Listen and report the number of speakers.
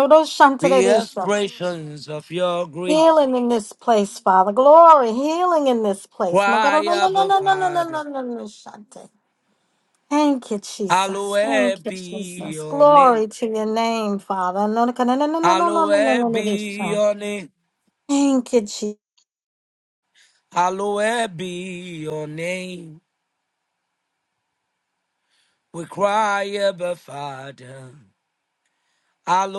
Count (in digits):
2